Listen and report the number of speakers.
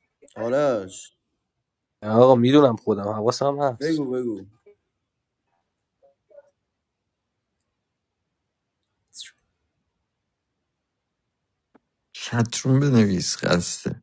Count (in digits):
3